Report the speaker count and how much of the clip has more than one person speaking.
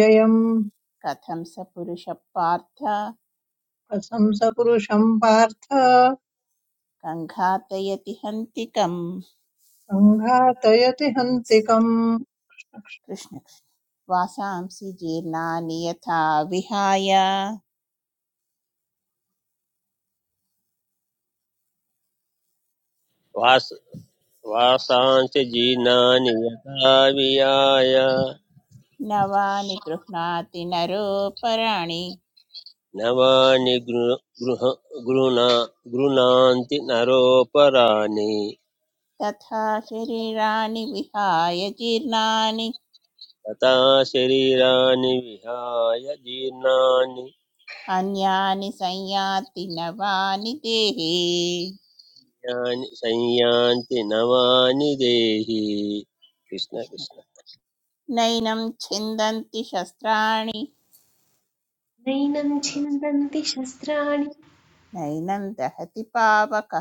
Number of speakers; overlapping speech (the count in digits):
4, under 1%